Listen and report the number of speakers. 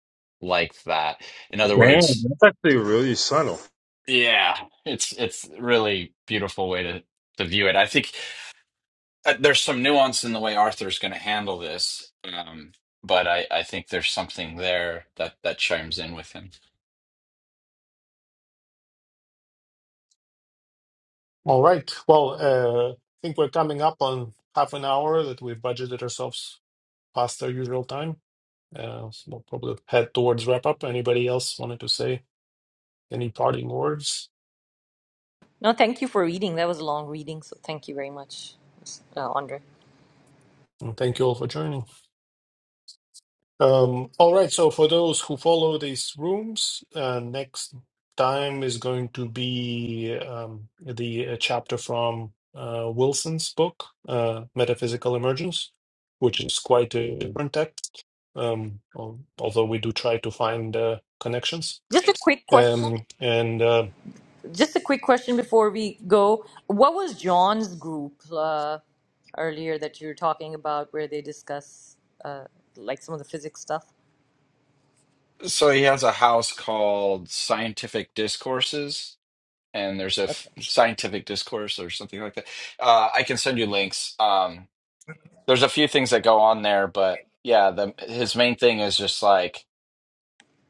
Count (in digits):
4